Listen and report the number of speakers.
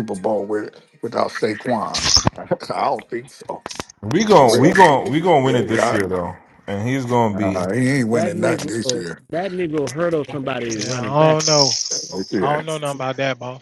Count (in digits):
4